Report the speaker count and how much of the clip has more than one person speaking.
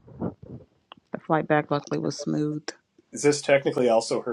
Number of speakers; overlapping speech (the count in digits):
2, no overlap